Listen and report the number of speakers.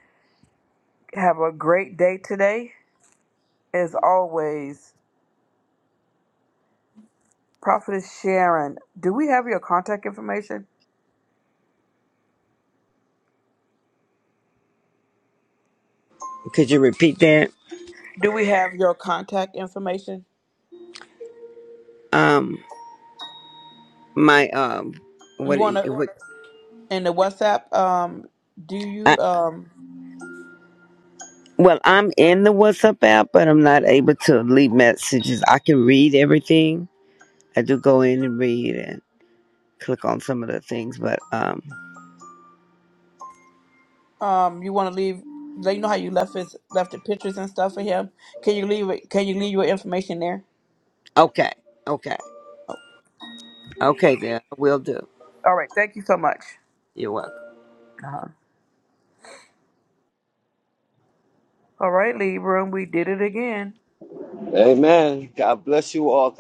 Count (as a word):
three